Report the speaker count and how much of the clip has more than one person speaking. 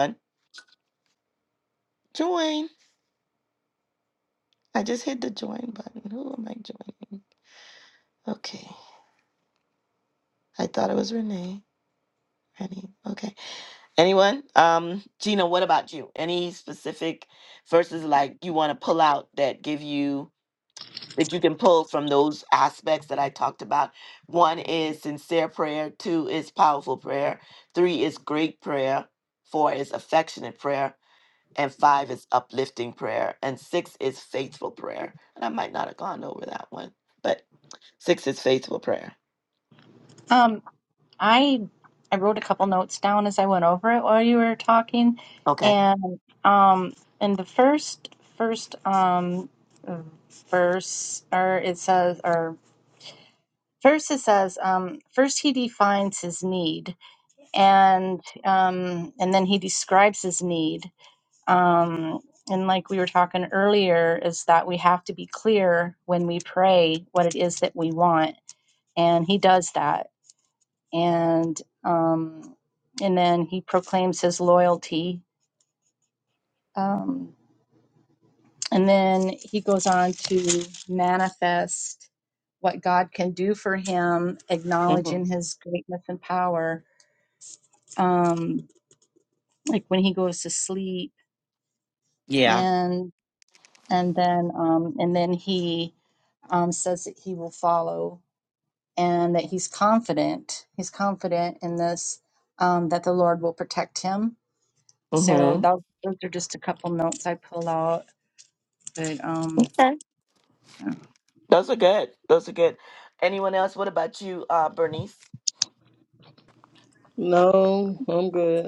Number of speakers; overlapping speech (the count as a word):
three, about 1%